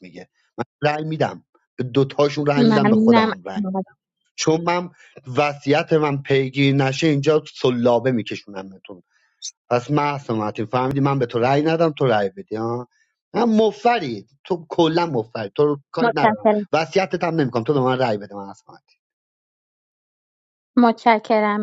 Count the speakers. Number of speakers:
2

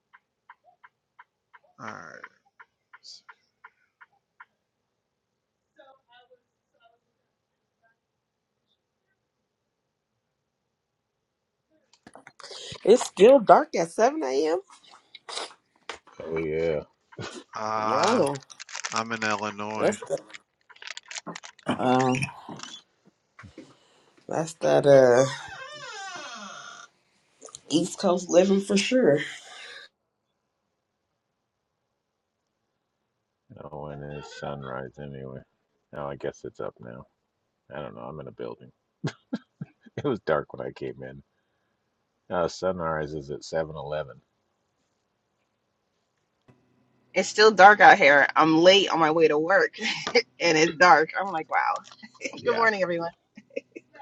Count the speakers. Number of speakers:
4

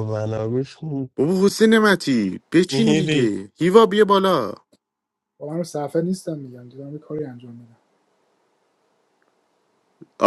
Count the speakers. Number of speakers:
3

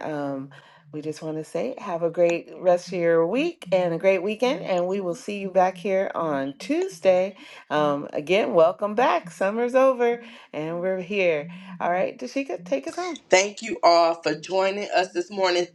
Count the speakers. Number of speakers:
2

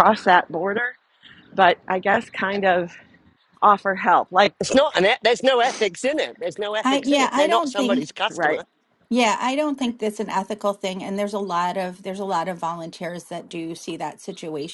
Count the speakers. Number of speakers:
3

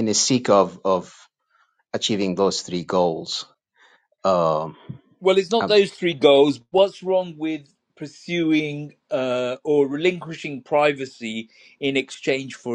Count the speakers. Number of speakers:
2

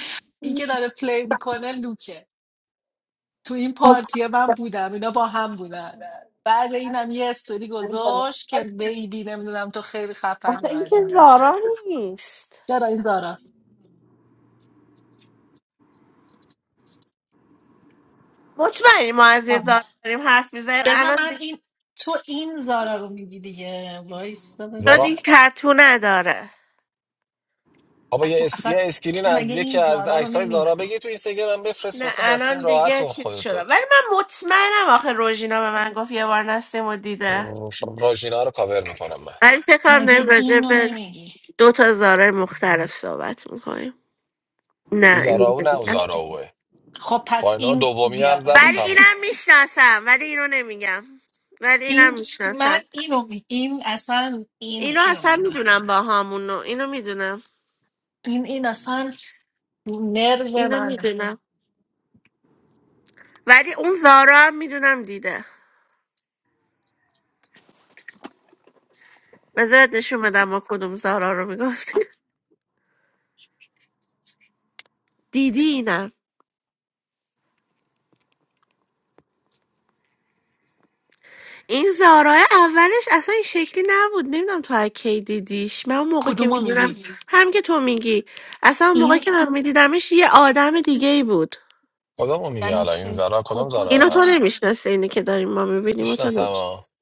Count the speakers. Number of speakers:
3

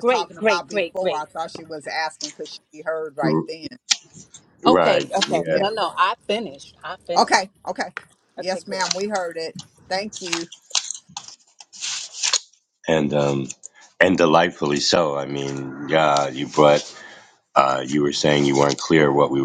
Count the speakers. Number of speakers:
3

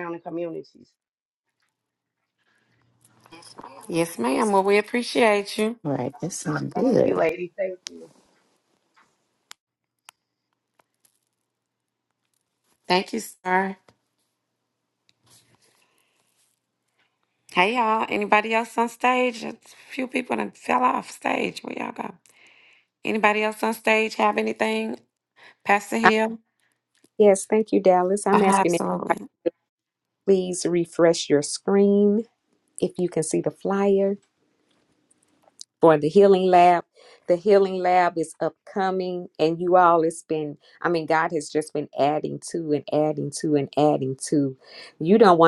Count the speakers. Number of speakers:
4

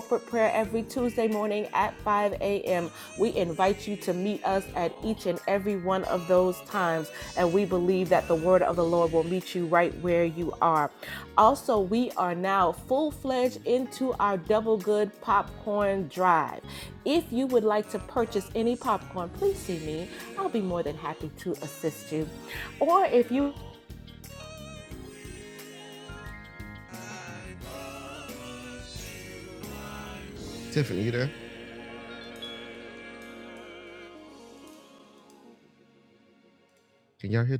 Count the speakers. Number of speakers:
2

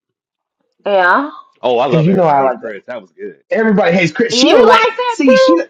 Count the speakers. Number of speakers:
3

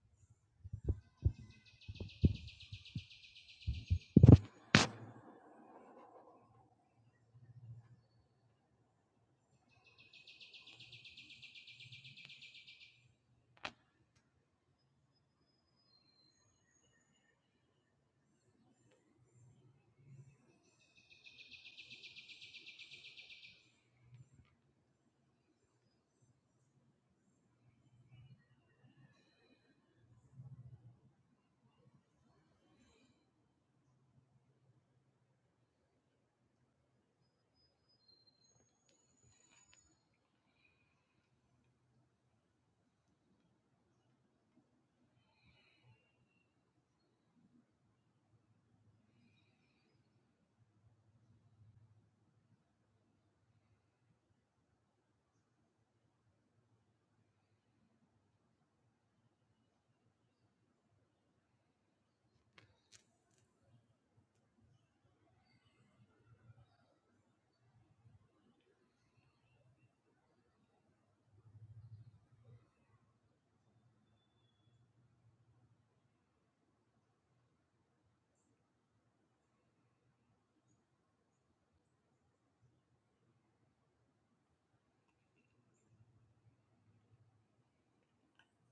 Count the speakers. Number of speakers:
0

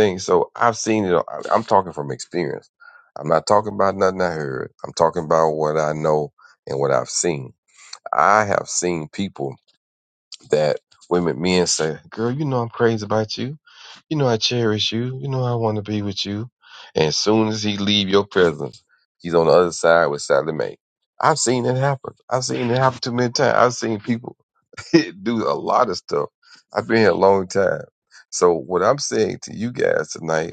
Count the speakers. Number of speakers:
1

